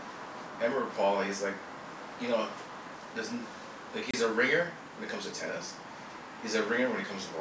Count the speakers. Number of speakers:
1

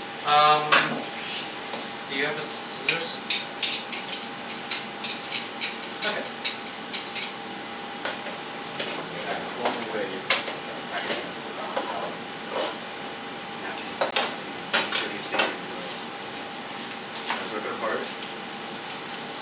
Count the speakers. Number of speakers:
2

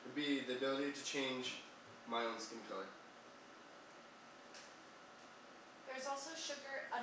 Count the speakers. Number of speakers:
2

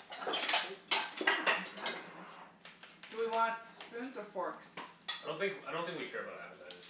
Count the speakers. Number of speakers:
3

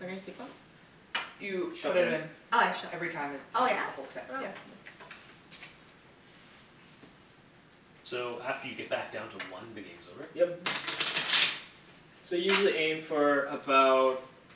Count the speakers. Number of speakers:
4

